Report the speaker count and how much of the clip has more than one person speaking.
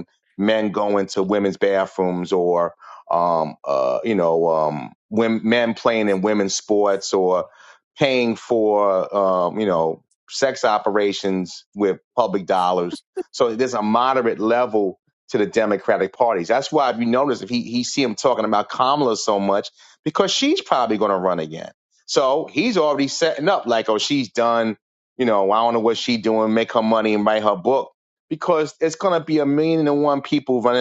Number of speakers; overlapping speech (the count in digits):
1, no overlap